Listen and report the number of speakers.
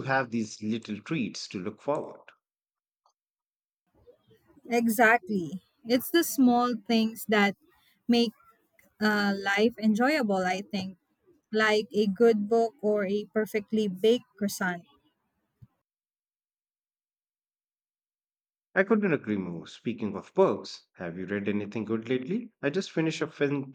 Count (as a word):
two